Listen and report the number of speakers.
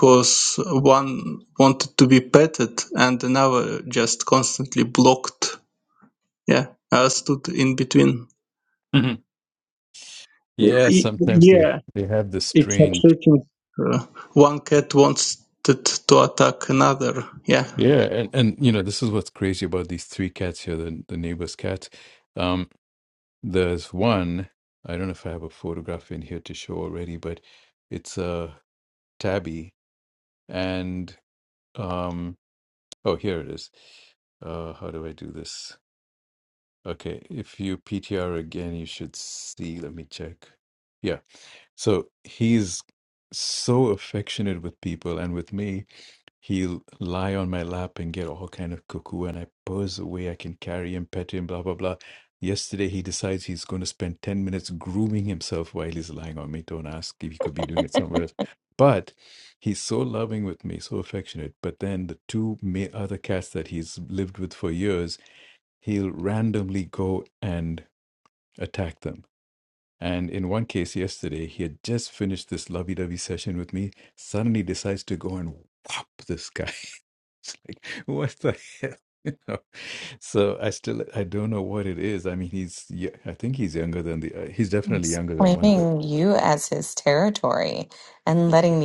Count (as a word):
three